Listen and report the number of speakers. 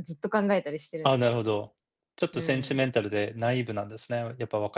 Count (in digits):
2